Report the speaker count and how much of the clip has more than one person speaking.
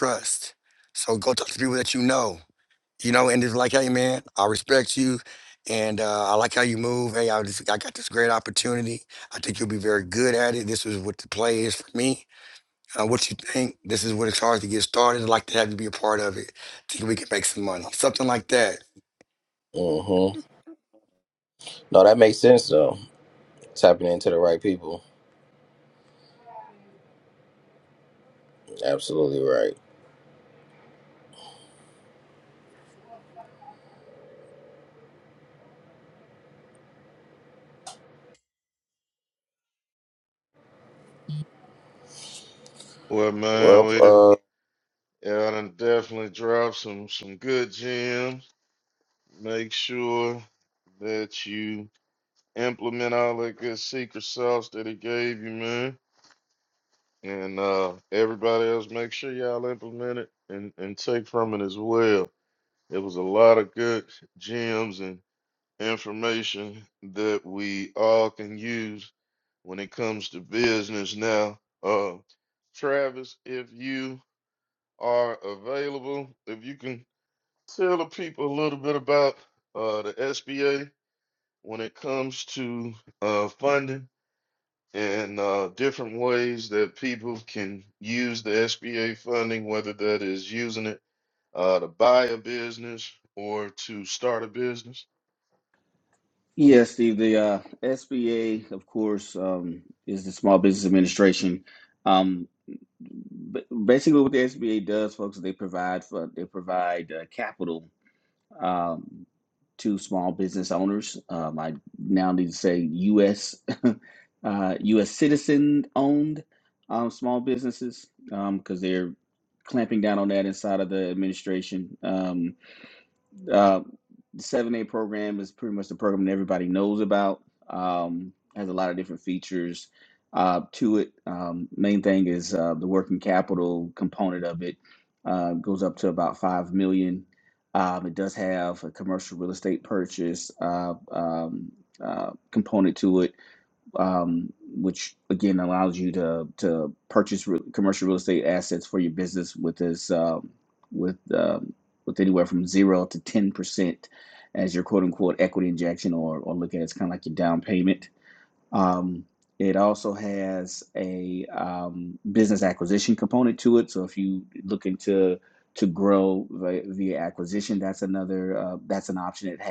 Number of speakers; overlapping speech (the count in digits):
4, under 1%